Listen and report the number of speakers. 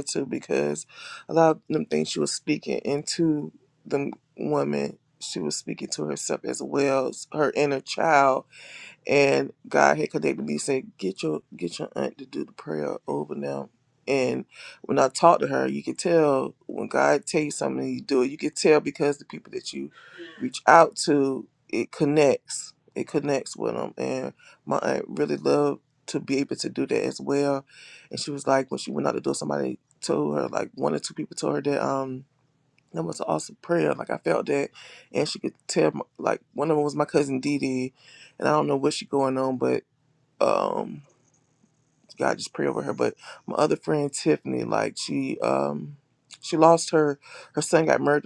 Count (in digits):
1